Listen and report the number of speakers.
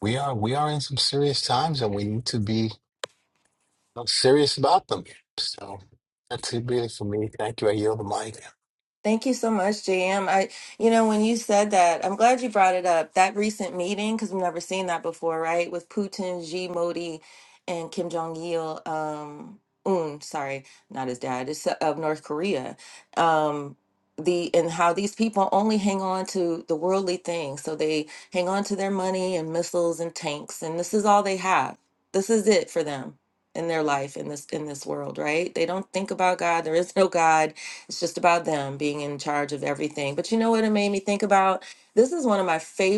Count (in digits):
2